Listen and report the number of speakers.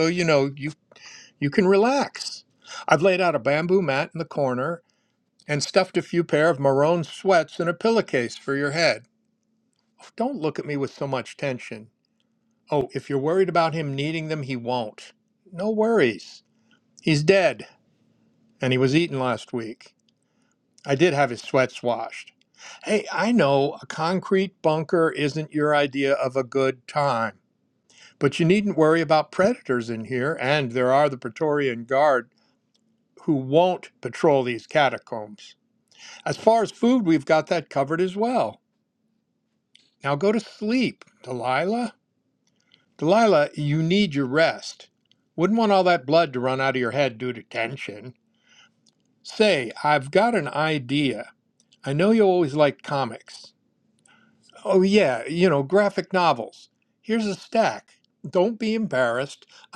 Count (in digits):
1